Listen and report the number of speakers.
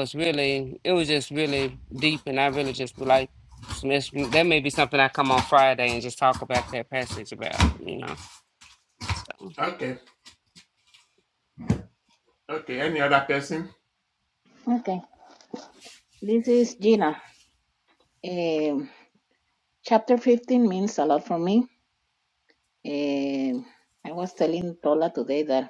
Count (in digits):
3